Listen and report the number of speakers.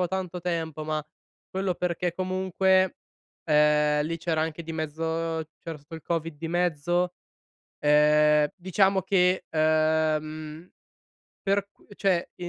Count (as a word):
one